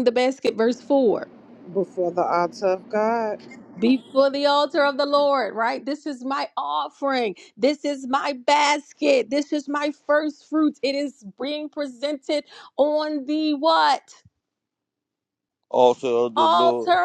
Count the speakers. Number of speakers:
3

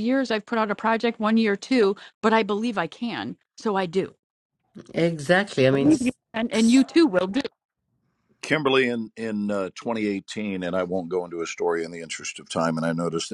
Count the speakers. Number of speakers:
3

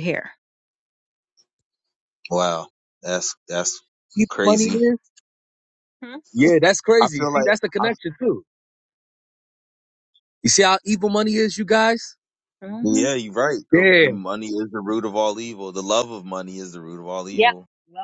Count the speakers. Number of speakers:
3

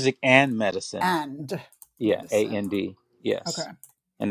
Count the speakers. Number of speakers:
2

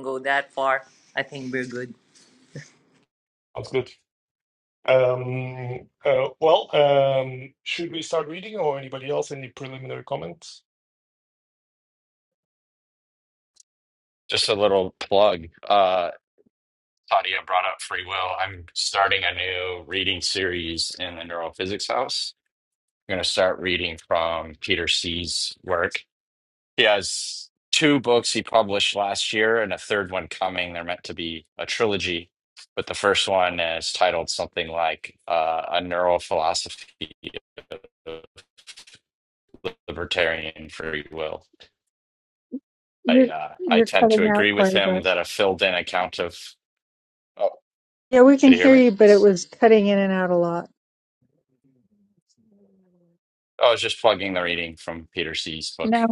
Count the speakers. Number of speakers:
4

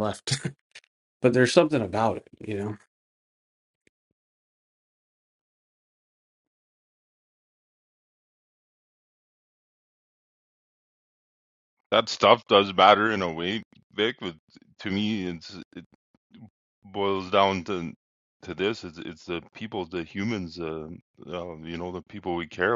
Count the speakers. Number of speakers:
2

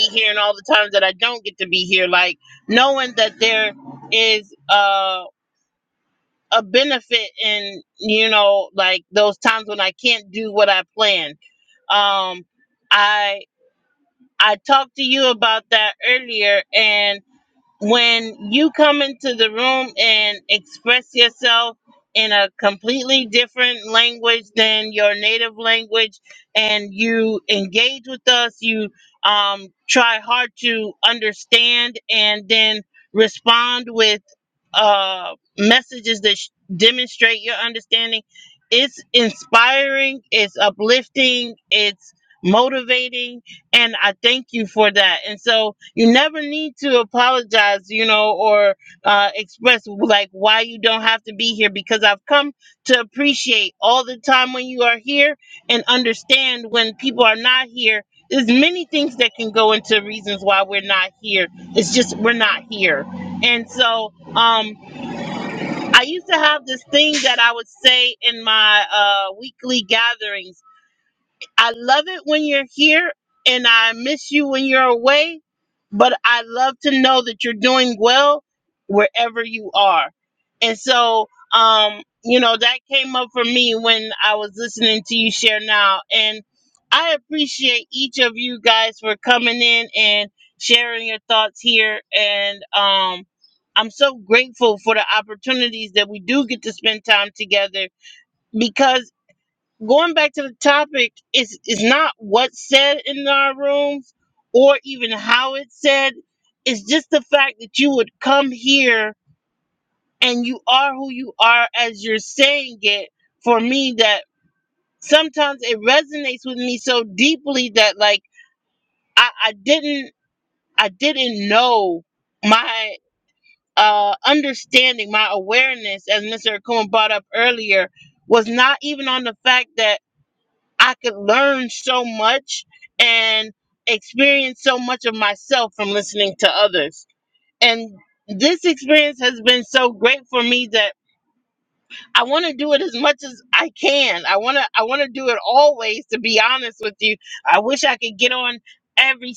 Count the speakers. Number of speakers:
1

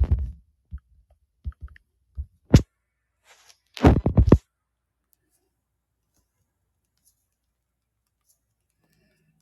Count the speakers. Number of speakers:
0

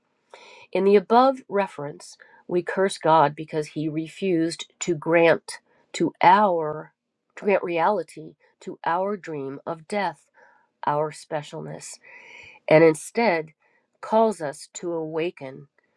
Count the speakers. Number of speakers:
1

